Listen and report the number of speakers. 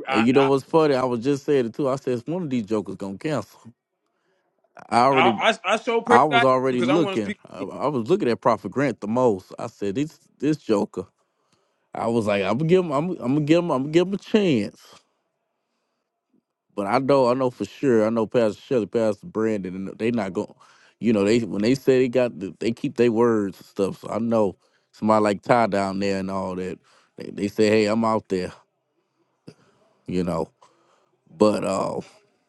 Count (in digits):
2